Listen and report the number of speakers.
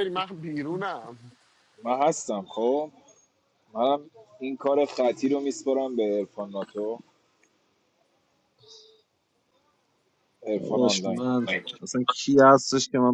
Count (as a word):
three